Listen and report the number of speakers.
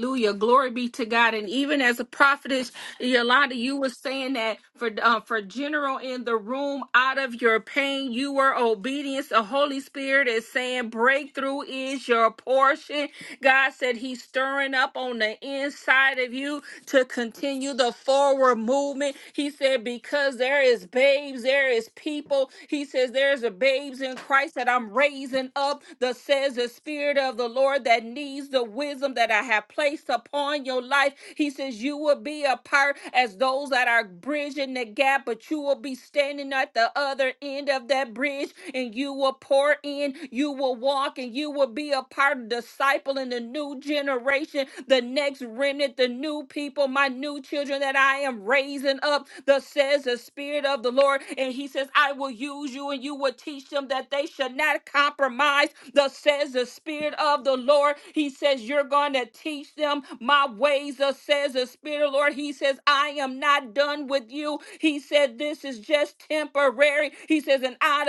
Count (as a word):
one